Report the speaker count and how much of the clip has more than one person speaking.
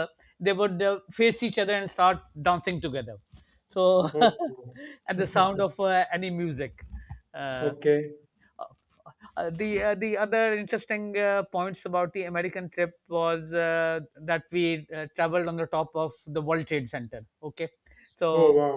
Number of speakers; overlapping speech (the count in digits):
2, about 2%